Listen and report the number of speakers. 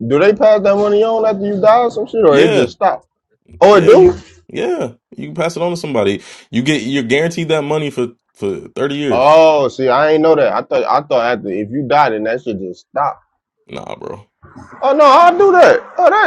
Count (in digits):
2